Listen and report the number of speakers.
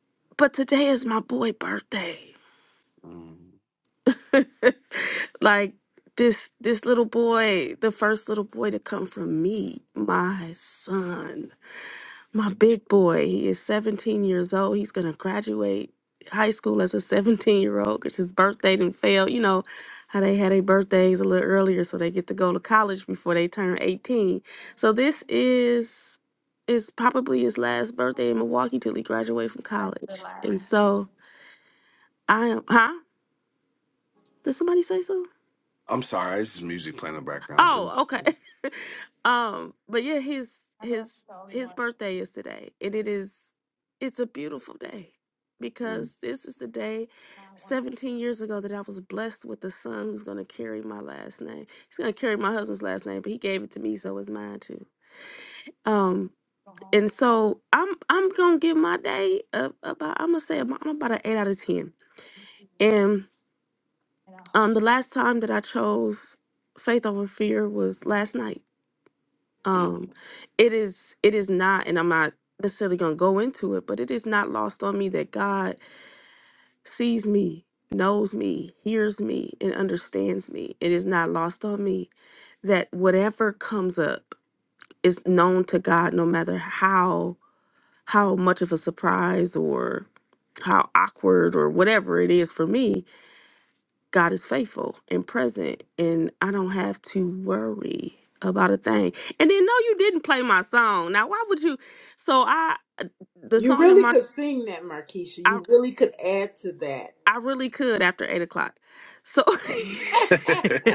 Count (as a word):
three